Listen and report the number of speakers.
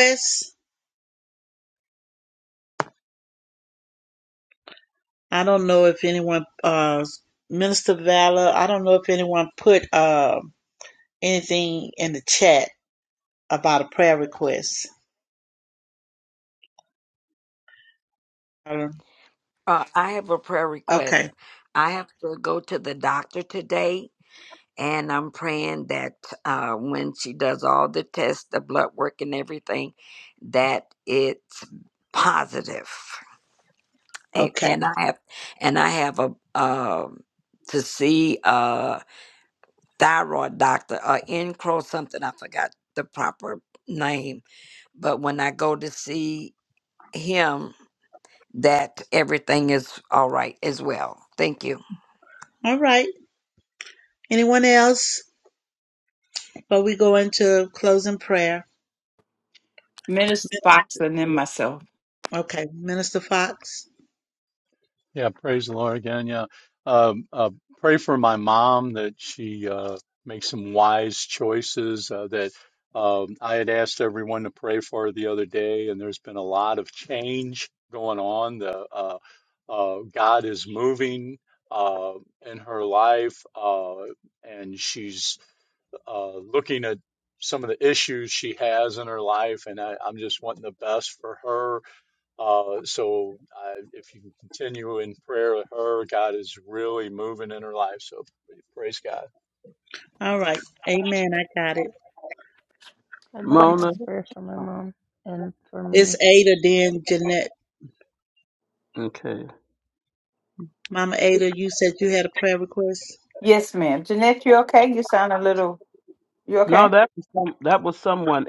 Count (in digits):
6